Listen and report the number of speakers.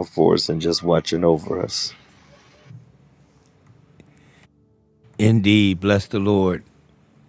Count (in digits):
2